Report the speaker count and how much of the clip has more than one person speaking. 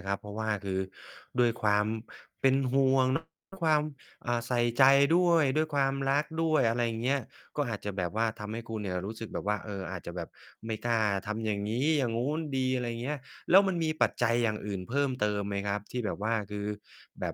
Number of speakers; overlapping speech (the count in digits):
1, no overlap